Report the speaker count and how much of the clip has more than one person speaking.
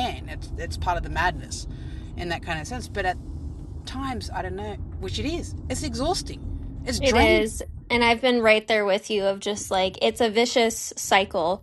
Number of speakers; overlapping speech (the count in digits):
2, about 4%